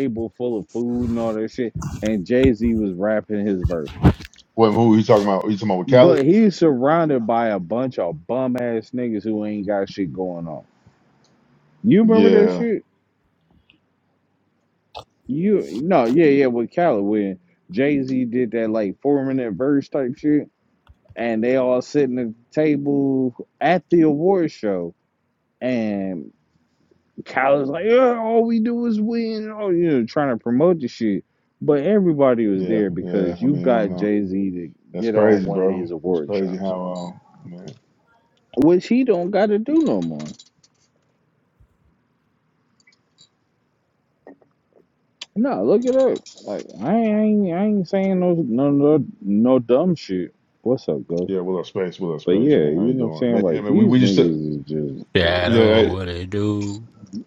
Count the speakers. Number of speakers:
three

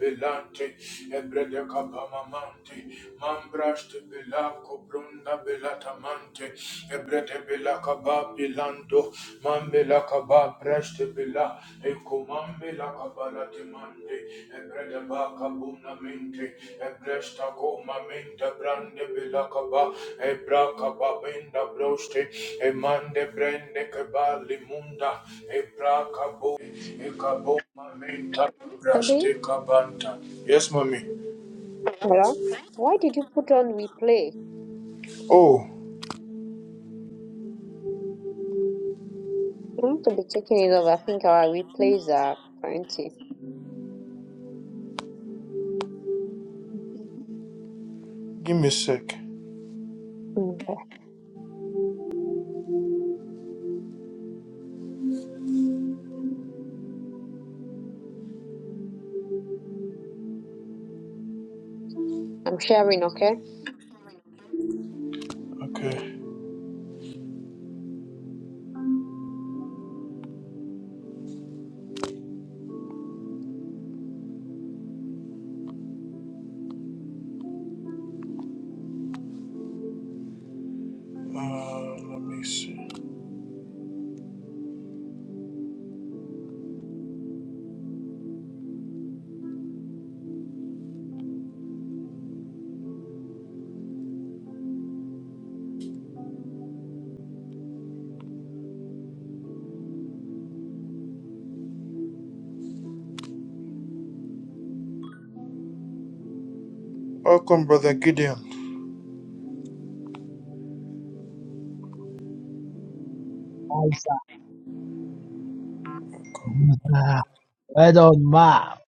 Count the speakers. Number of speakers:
three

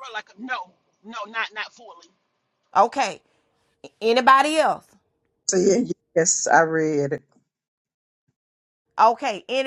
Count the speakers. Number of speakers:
three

